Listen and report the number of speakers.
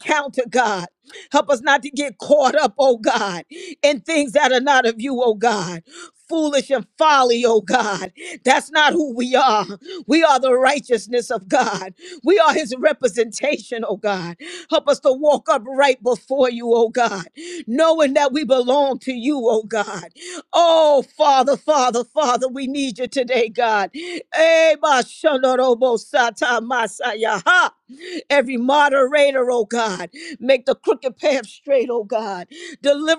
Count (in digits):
1